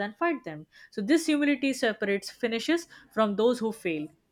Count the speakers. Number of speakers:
1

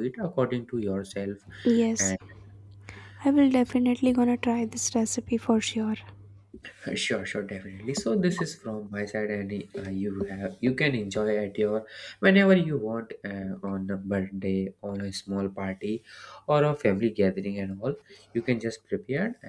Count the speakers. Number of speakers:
2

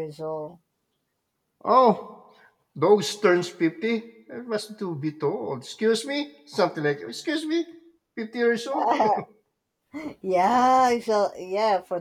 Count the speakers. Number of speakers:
2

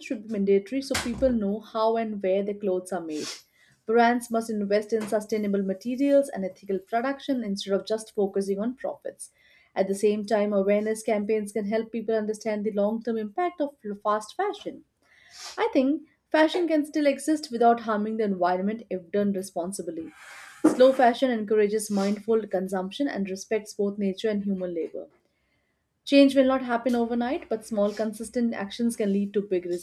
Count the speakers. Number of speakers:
1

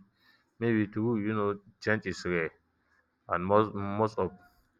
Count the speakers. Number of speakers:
1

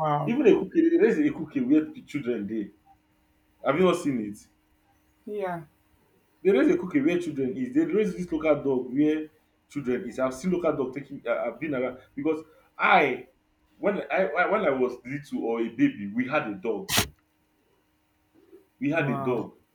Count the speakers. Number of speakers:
2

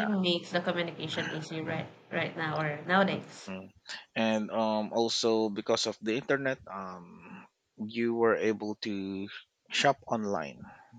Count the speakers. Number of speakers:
2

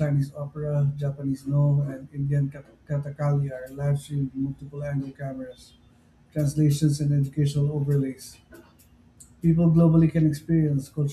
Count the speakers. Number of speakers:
1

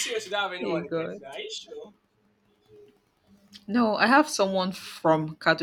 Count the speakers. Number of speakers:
2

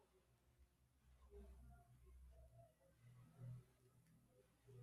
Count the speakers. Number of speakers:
0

